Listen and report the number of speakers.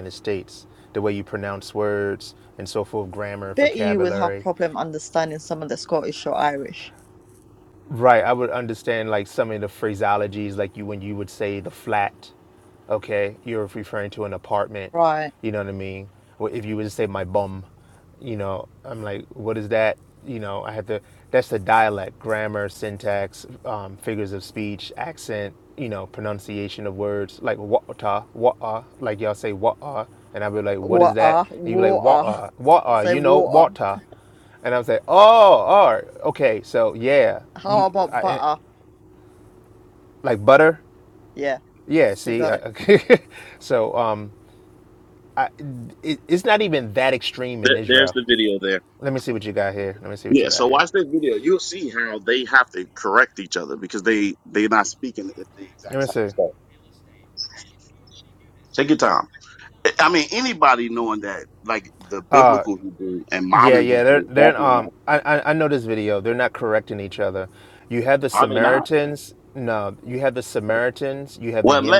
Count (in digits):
3